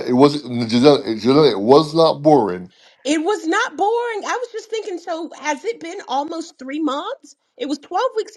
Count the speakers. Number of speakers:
2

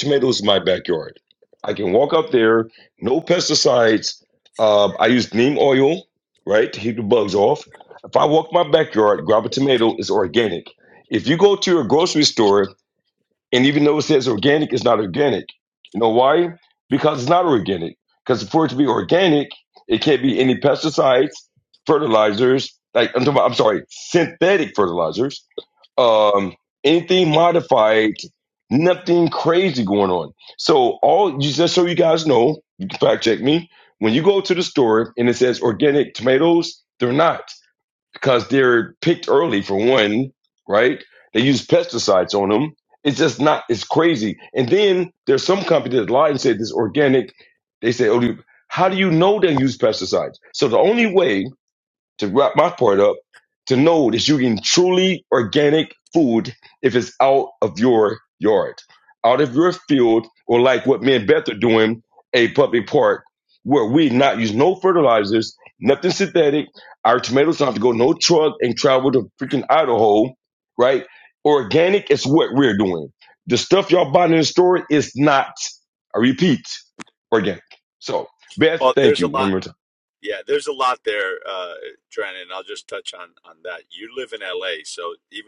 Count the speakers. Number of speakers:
2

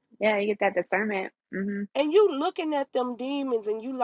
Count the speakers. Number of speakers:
2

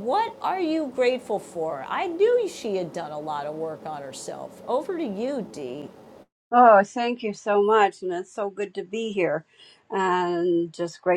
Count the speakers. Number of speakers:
2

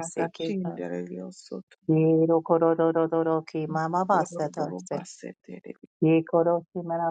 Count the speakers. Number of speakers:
2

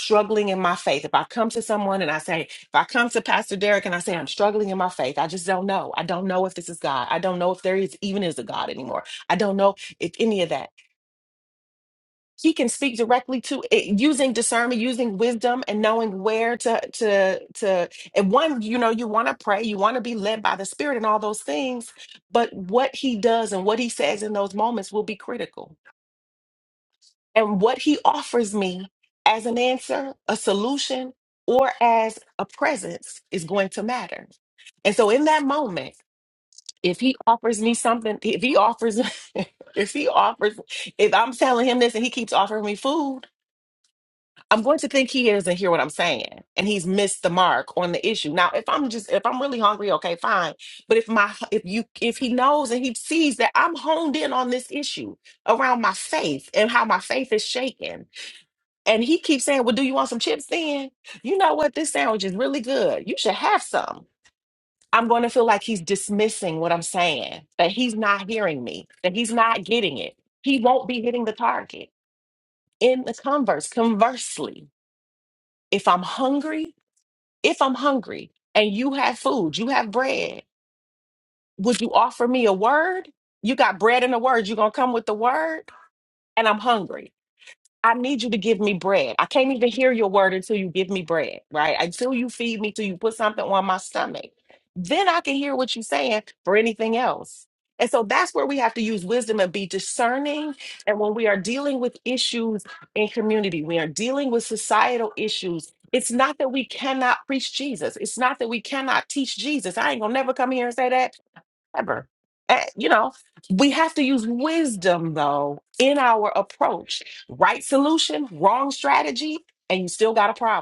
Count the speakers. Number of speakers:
1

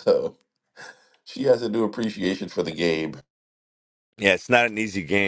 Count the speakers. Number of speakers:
2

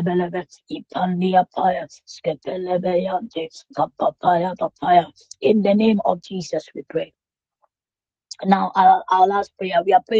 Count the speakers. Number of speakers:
1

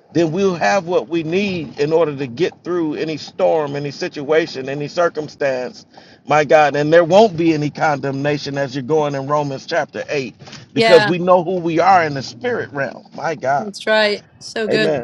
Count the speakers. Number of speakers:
2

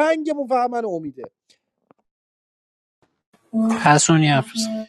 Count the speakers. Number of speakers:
2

